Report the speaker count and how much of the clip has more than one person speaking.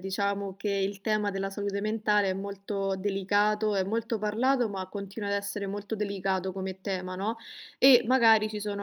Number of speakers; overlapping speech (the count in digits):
1, no overlap